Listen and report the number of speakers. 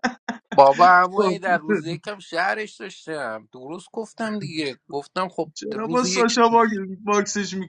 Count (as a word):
two